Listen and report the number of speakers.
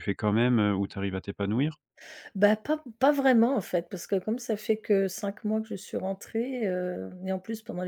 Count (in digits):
2